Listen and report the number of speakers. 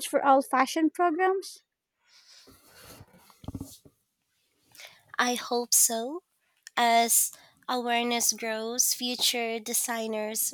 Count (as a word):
two